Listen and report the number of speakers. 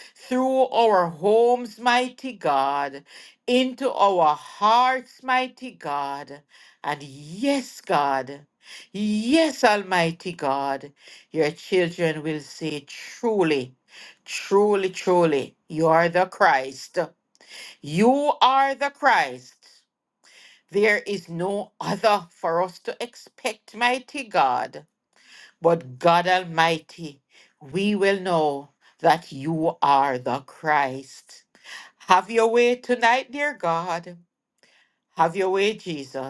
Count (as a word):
one